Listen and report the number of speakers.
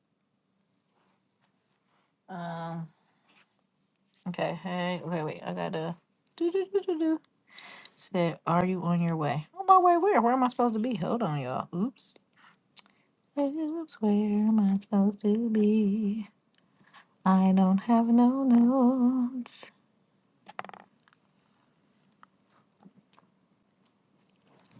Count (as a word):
one